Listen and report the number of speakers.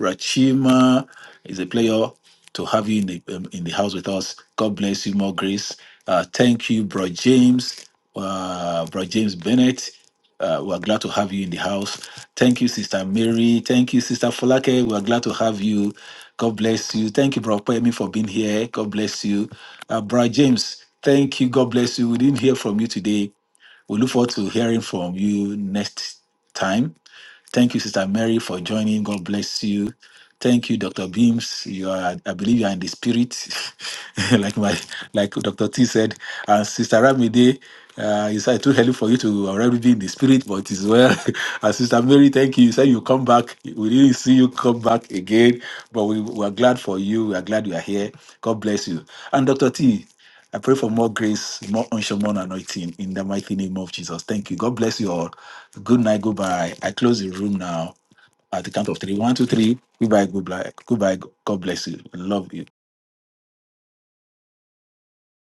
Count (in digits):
1